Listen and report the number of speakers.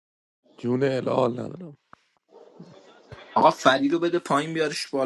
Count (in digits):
2